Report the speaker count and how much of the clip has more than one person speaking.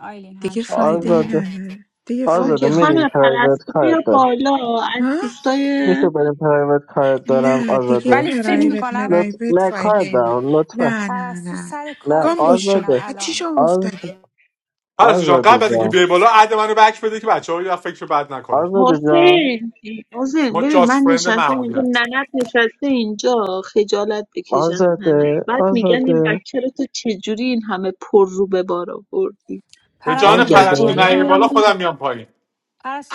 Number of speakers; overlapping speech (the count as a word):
five, about 47%